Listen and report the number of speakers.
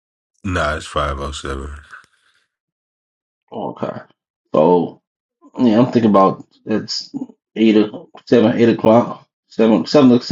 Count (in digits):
2